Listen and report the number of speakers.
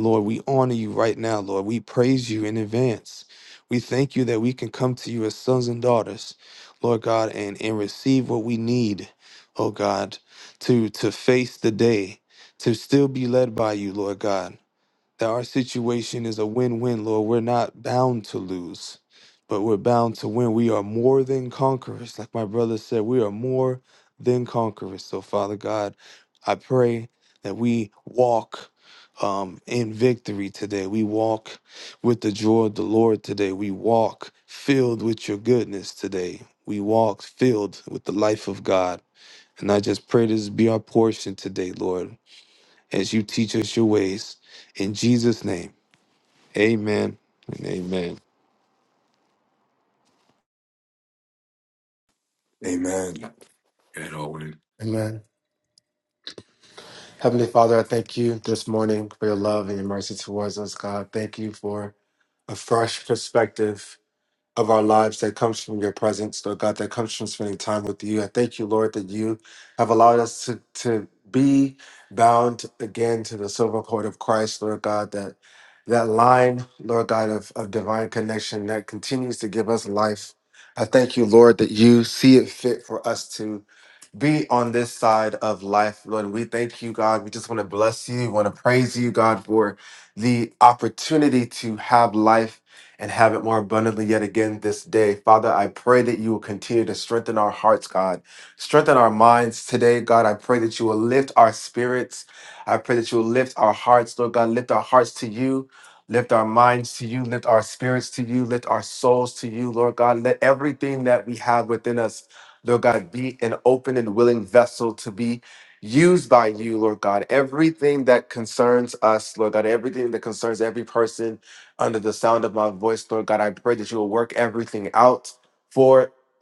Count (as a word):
three